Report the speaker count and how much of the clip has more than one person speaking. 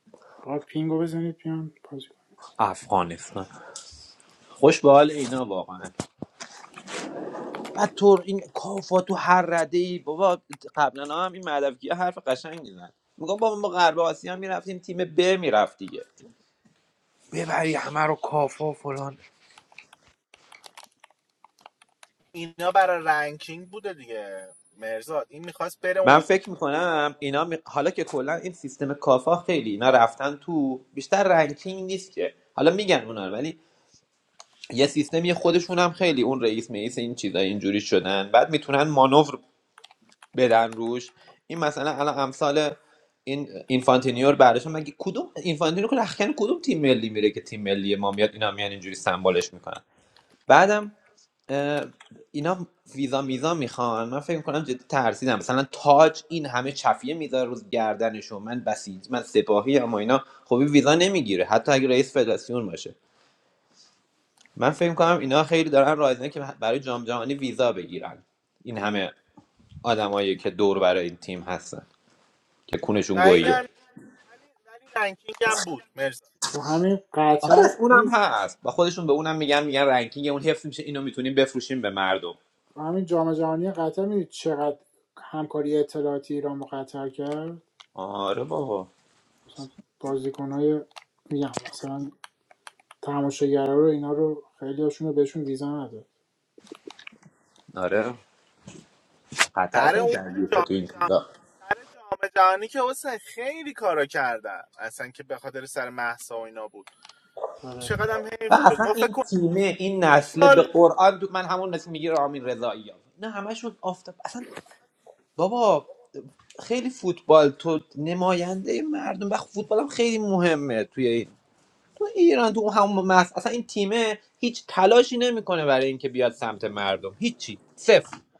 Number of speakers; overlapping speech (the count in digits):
3, about 3%